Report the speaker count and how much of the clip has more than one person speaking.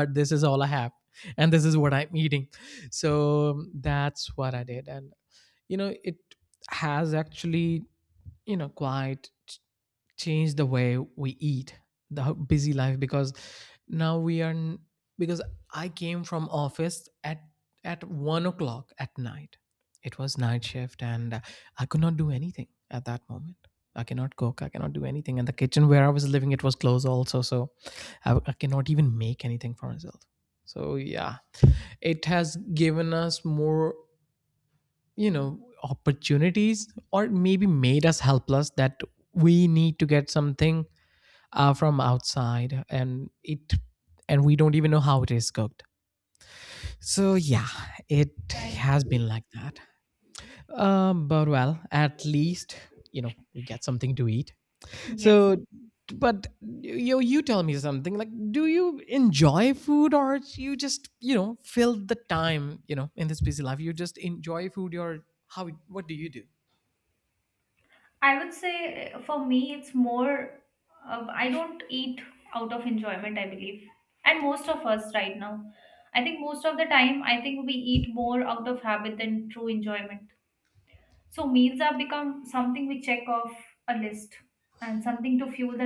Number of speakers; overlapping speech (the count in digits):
2, about 1%